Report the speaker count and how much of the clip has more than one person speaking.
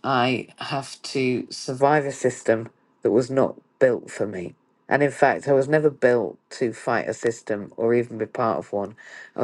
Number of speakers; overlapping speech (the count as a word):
one, no overlap